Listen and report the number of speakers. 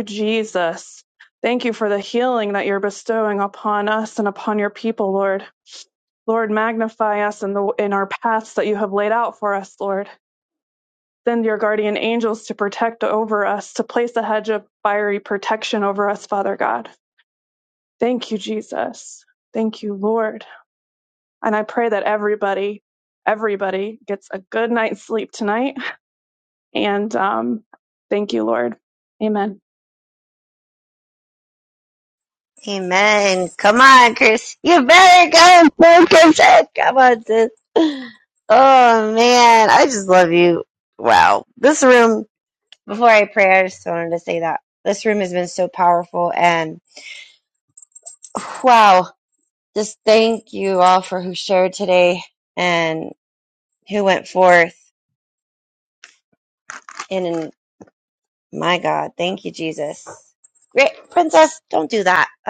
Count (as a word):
two